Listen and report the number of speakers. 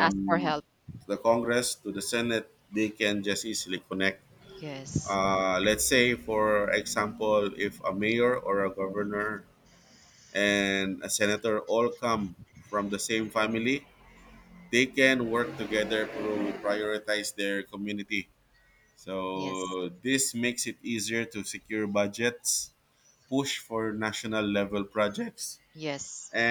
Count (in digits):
2